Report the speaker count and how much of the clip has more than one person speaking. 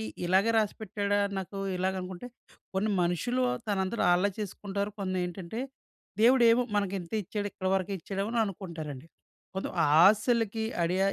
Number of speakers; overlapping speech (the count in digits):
1, no overlap